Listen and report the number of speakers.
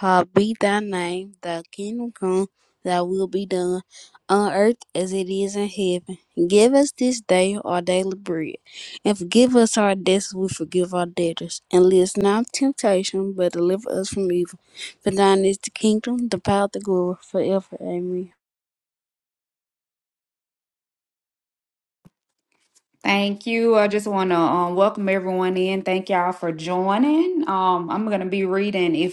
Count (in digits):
2